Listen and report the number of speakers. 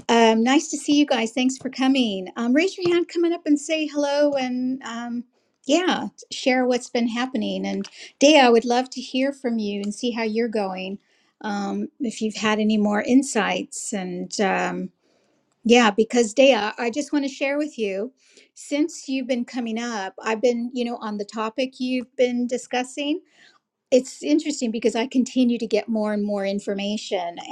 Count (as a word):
one